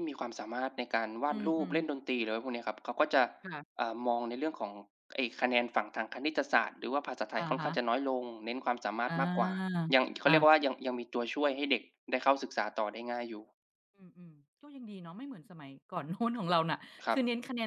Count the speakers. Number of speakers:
two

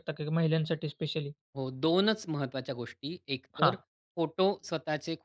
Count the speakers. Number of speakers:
two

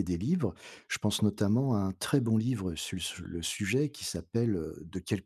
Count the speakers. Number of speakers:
one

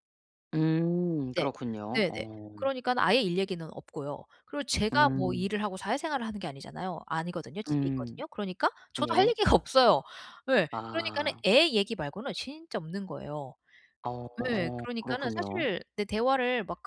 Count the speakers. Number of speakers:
two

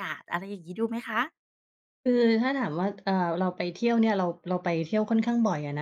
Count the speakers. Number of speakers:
two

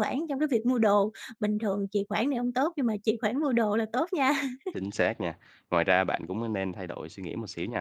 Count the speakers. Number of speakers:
two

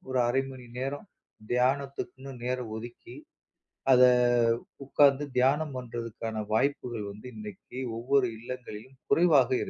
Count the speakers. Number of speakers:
one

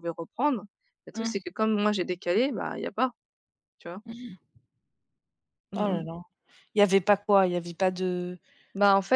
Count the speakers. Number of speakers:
two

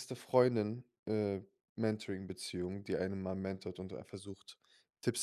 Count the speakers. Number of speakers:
one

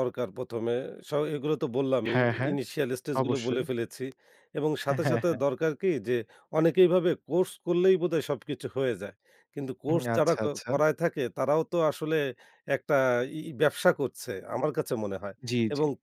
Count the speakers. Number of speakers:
two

